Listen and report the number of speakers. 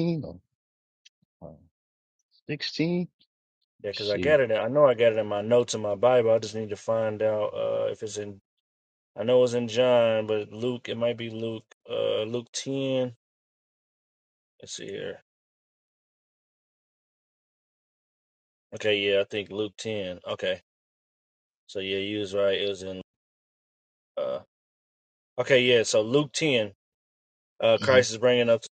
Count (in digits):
2